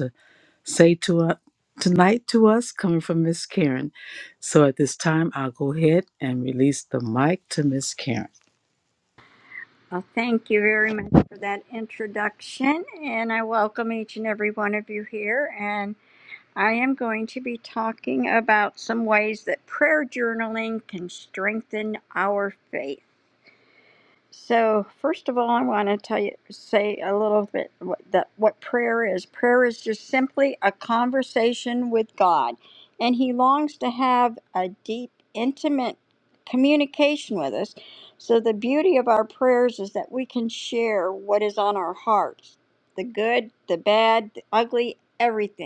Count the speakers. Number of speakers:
2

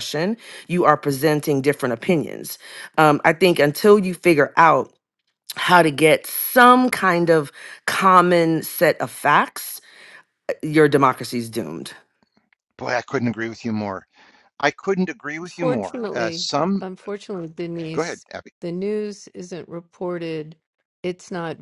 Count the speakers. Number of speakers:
3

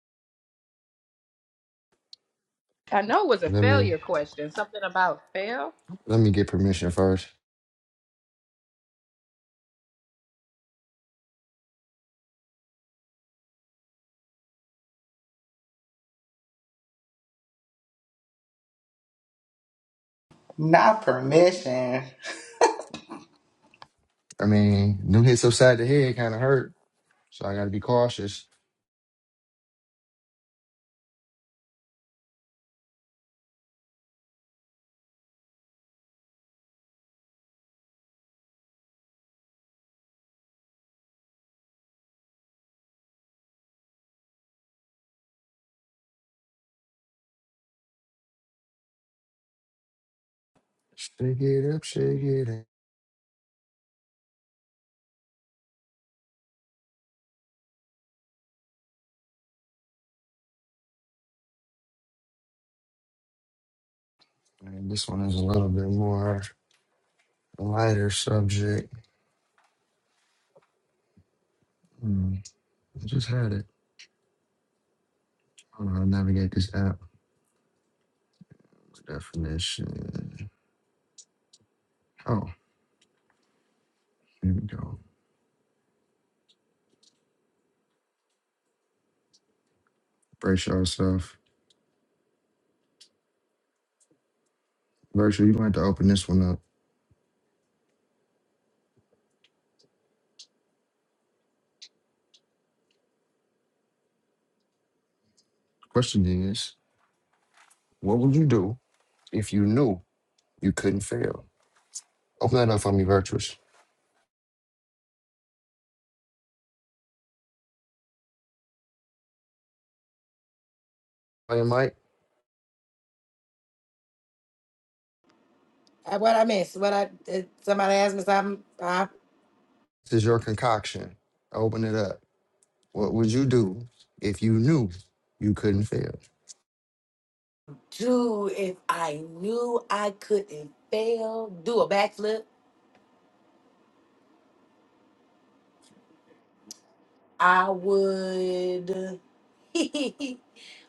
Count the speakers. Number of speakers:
4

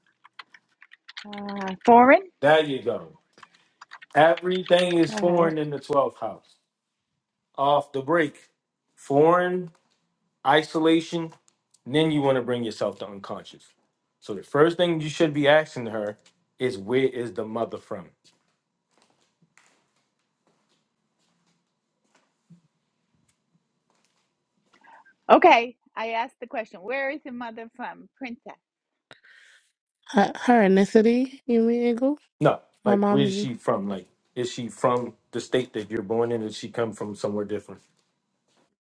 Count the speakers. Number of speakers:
3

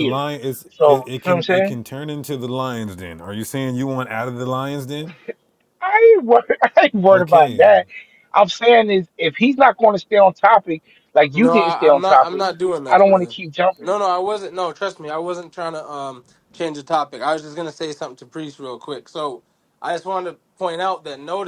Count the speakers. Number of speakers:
3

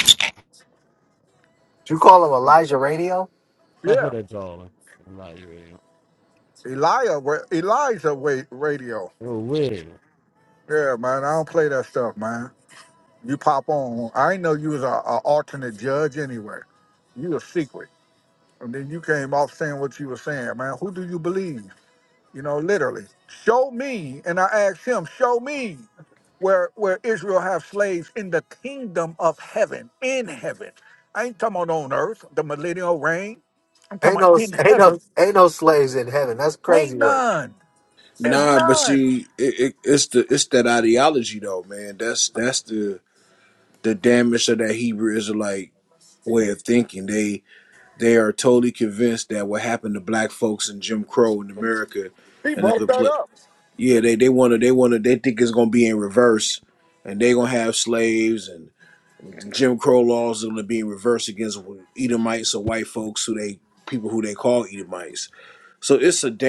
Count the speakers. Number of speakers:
4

